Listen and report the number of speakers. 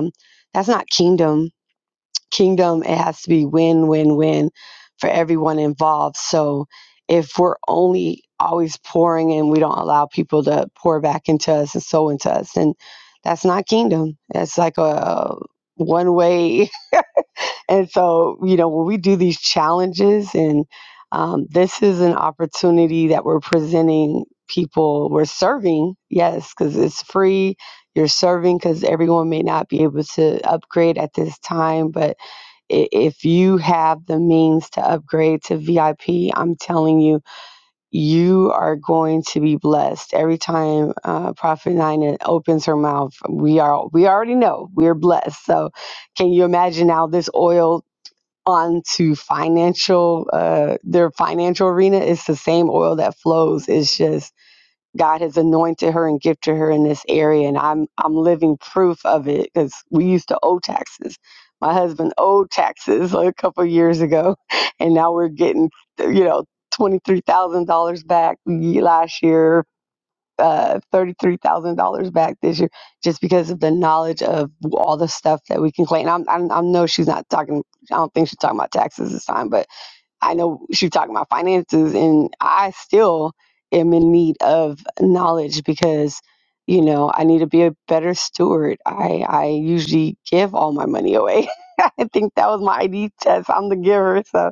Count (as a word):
one